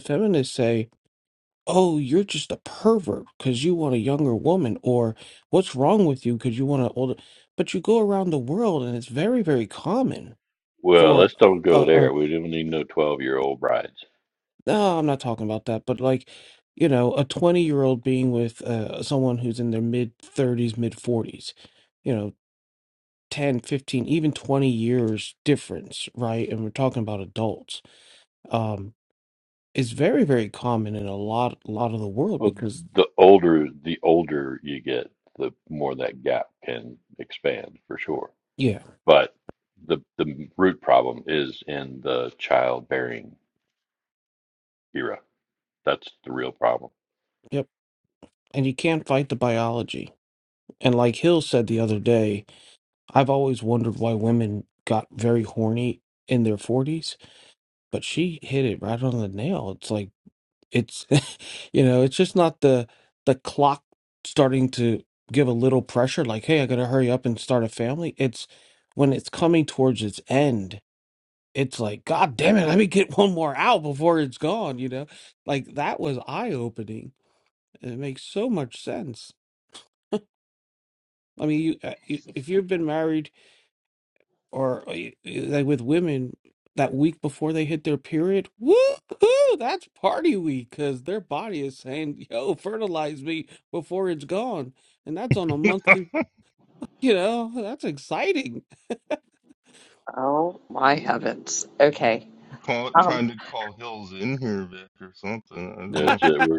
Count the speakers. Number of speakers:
four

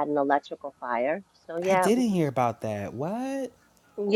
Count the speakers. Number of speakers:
two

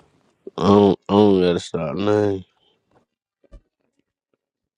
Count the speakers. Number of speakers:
one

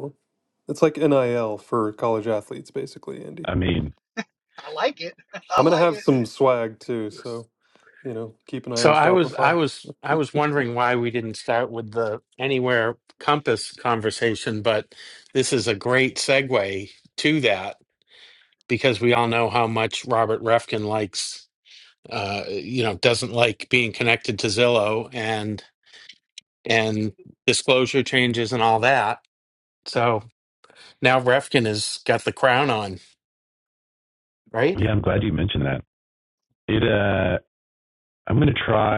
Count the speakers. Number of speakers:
four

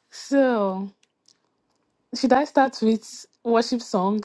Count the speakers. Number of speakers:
one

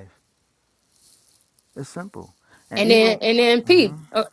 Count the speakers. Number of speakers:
two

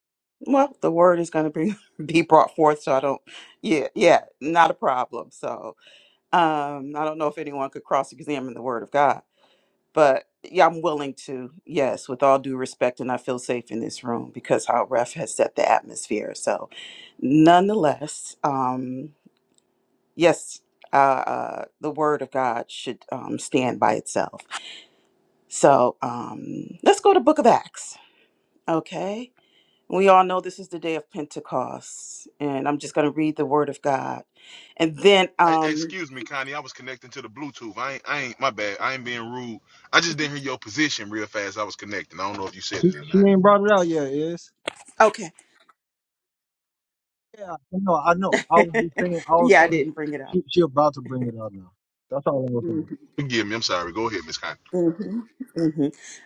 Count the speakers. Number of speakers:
three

